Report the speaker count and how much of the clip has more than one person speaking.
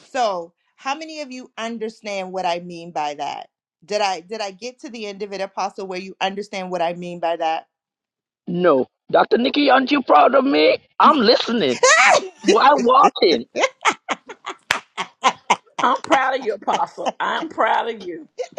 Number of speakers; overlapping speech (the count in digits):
3, no overlap